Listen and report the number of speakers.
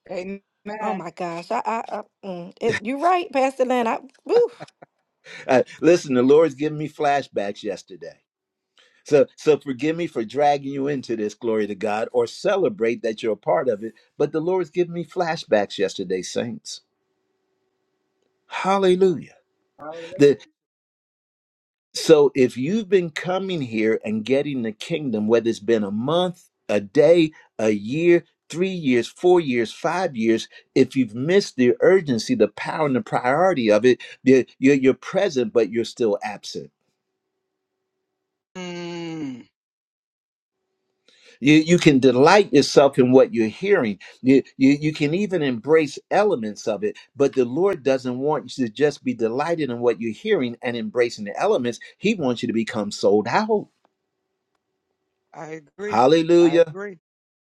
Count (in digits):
3